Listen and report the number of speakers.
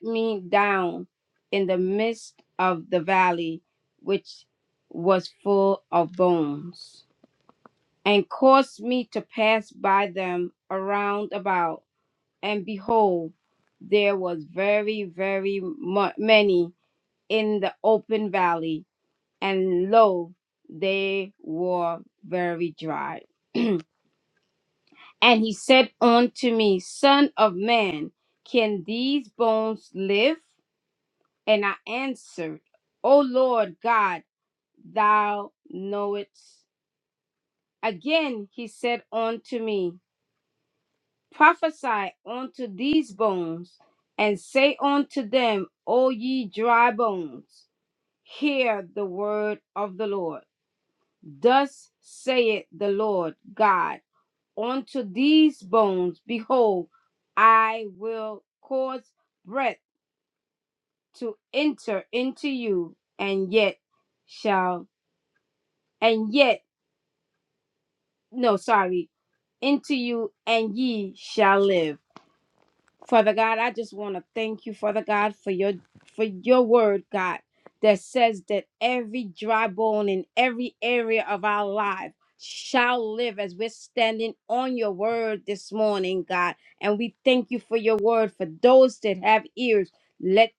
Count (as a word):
one